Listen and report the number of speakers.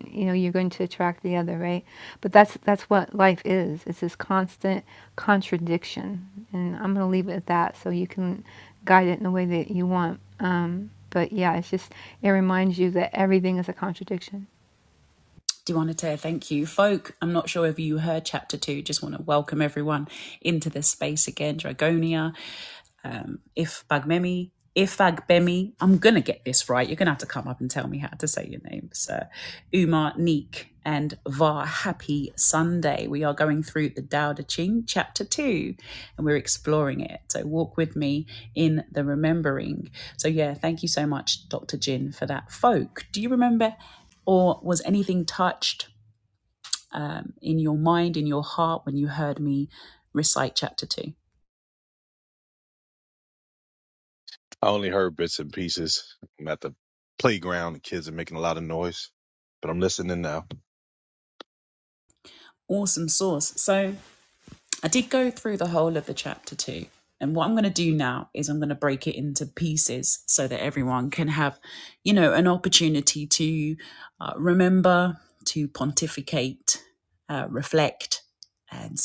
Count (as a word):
three